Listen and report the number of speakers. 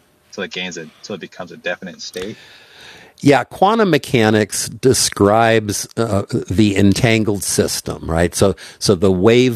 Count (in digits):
2